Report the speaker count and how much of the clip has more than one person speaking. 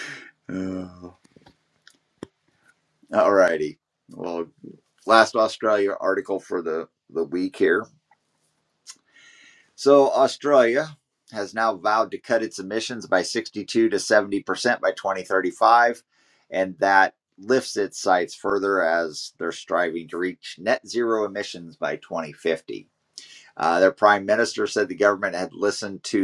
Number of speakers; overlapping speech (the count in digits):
1, no overlap